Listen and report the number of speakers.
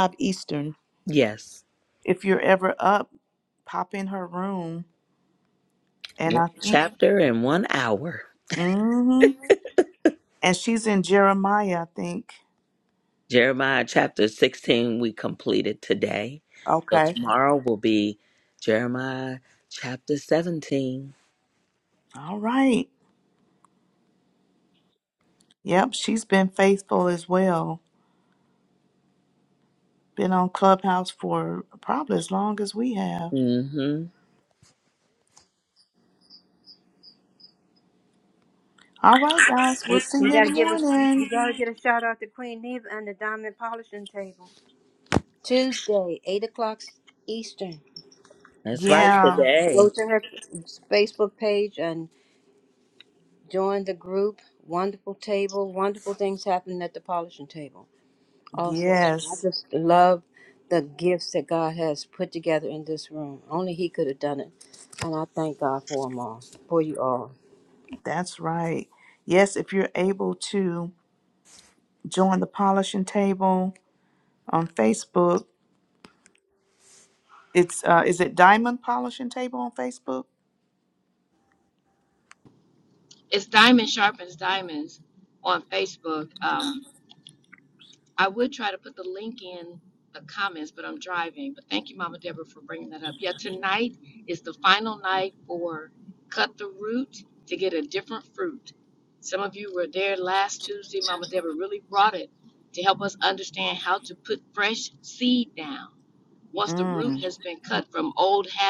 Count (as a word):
four